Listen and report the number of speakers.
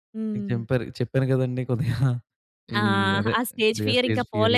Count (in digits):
2